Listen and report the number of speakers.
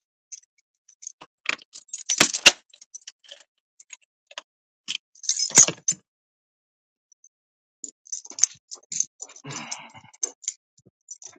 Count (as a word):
zero